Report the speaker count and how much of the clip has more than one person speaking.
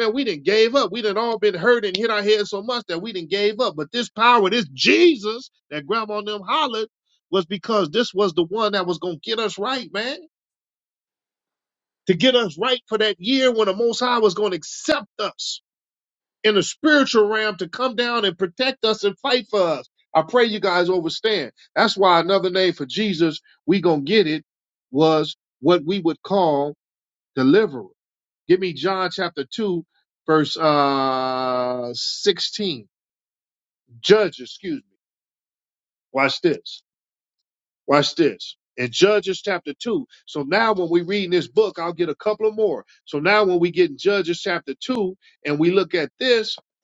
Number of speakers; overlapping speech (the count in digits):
1, no overlap